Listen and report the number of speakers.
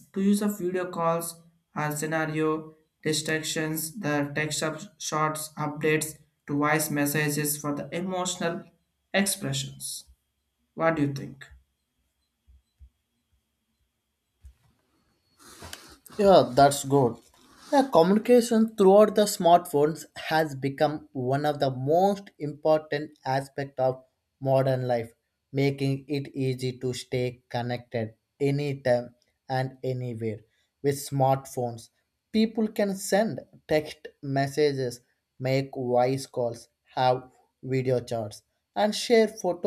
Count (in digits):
2